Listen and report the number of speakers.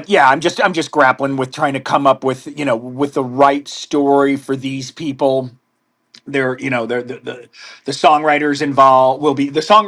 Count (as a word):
one